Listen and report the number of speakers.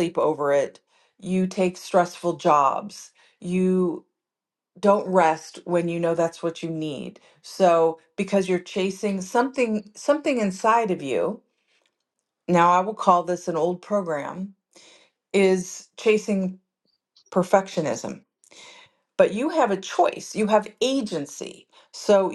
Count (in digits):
1